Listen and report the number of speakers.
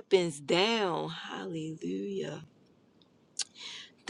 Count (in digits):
1